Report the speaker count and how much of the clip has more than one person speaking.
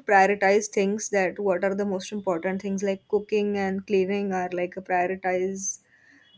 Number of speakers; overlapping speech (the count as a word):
one, no overlap